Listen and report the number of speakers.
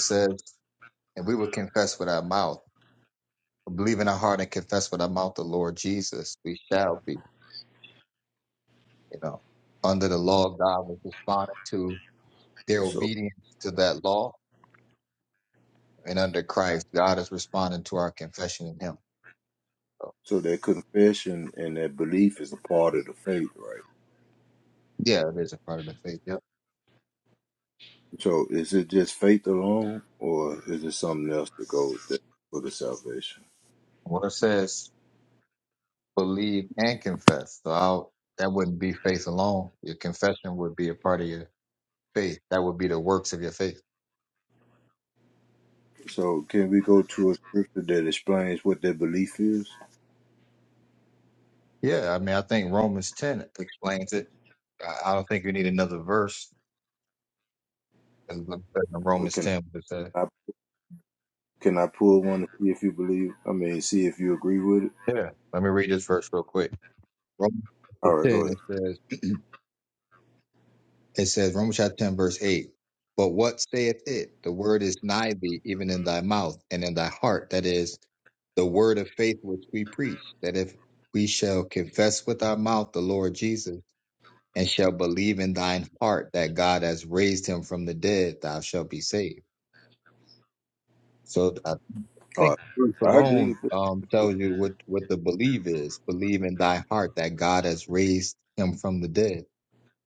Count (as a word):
two